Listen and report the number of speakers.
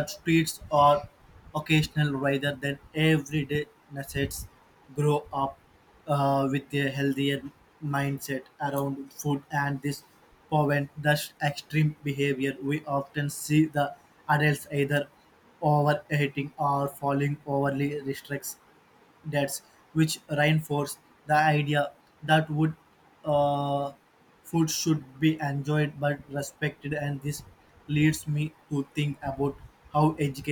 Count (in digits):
1